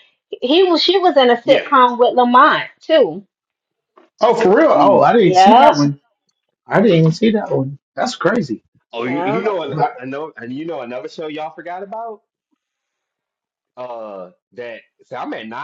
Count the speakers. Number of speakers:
three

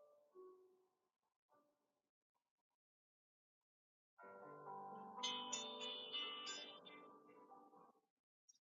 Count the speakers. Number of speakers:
zero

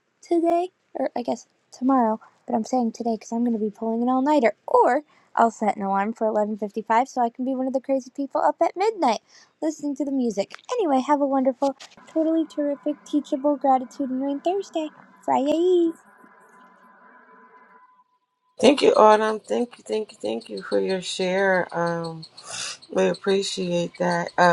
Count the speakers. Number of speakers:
two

